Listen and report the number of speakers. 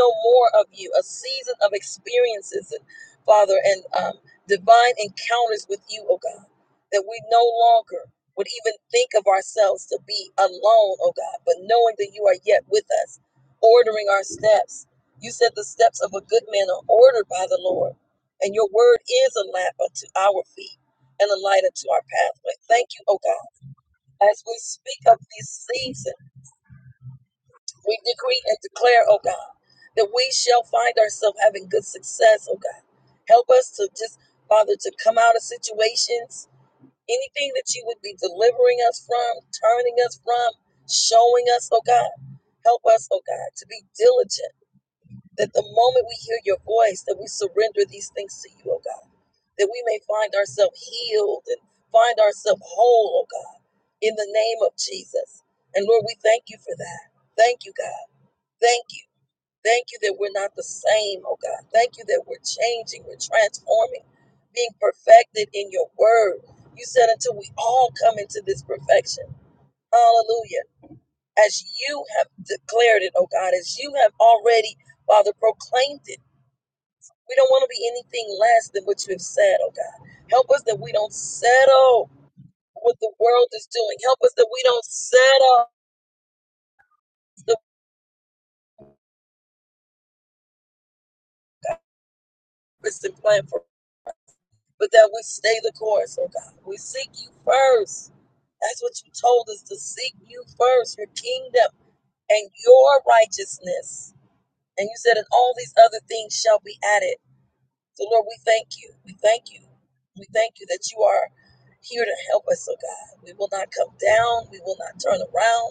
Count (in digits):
1